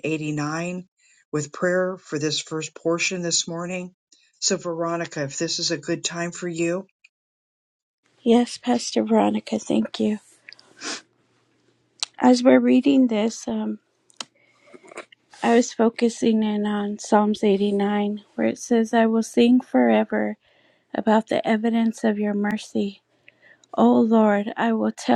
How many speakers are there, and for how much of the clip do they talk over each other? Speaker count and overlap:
2, no overlap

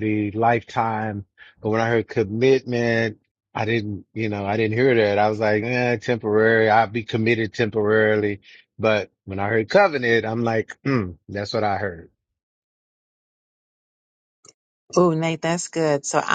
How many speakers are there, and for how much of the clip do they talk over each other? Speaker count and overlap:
2, no overlap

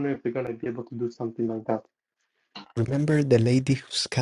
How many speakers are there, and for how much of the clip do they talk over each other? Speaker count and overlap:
2, no overlap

